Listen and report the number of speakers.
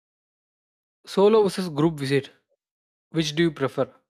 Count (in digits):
1